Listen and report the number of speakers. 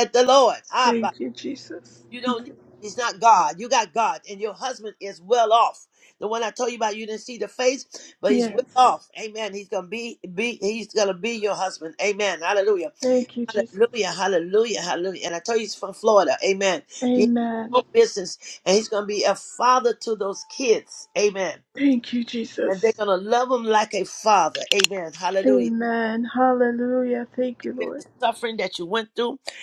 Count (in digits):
2